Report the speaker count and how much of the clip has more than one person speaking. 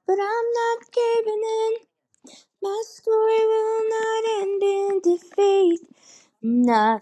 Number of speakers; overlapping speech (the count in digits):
1, no overlap